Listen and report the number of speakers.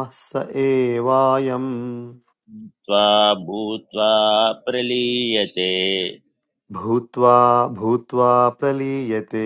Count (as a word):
two